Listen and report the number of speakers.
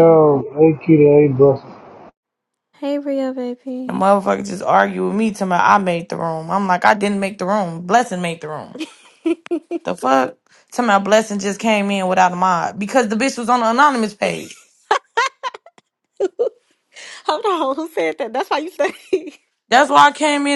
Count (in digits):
3